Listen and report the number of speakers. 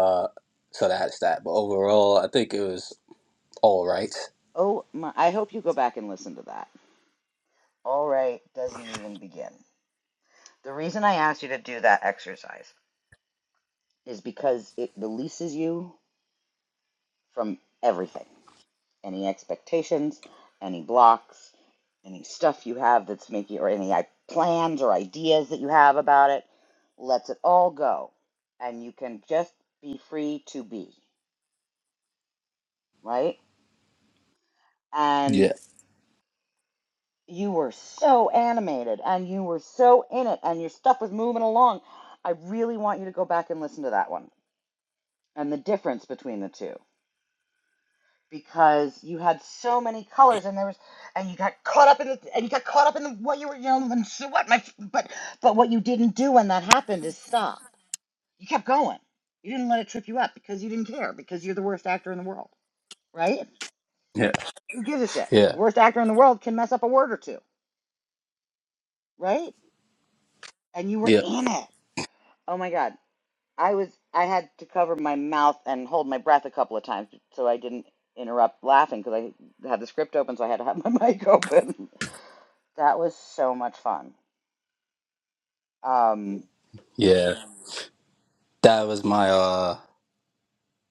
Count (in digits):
2